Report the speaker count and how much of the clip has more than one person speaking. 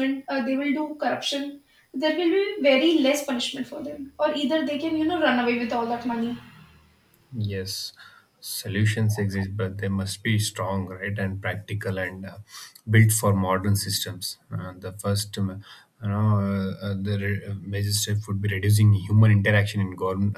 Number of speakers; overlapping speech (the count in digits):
2, no overlap